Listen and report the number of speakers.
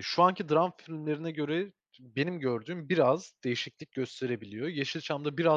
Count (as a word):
one